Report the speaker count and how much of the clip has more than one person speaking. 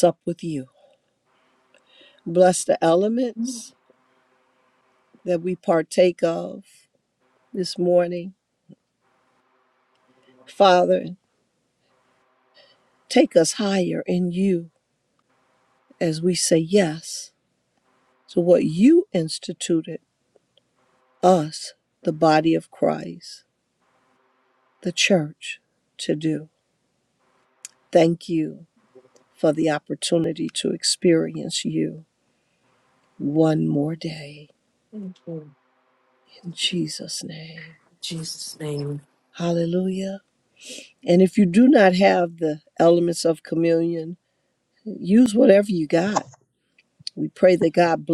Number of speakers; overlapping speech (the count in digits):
2, no overlap